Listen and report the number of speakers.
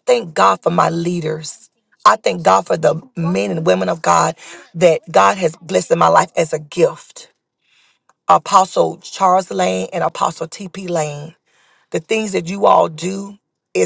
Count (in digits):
1